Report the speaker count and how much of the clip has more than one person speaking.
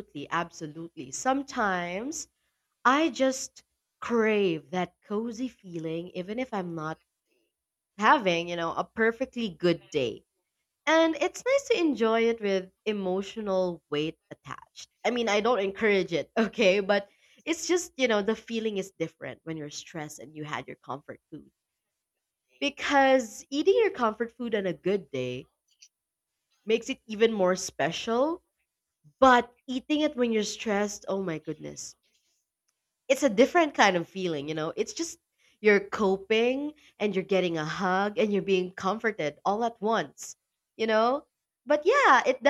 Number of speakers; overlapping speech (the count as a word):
one, no overlap